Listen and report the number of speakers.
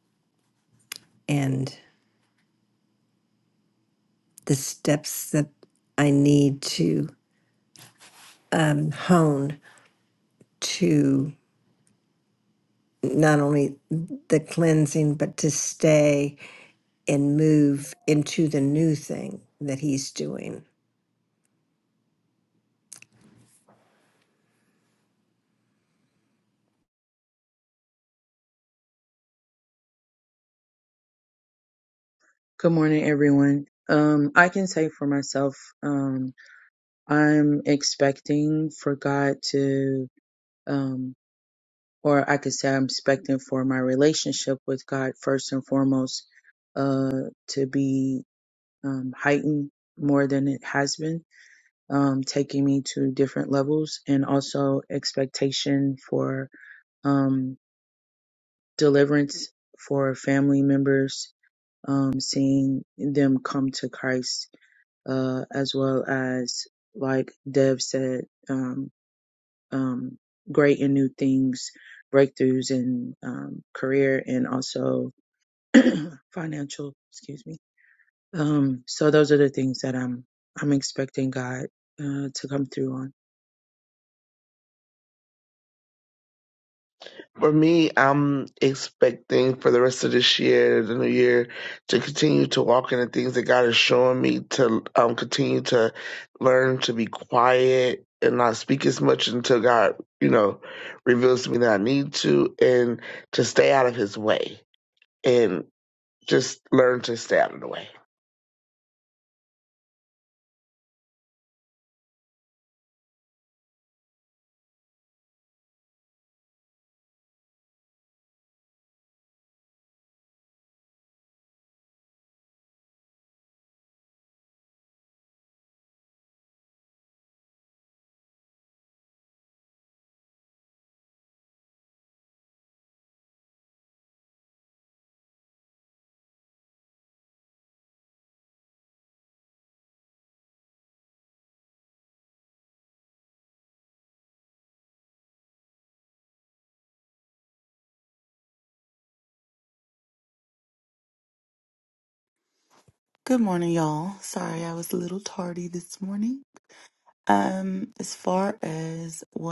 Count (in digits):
4